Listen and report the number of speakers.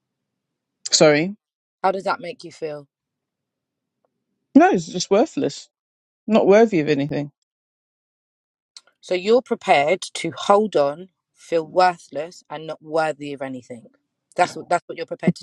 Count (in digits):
2